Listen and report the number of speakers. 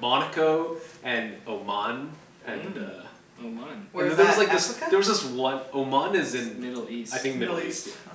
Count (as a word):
three